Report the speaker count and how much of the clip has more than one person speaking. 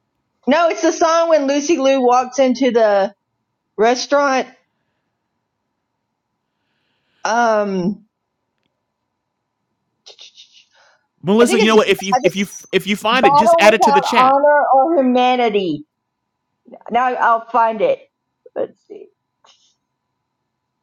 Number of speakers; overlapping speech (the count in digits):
2, about 8%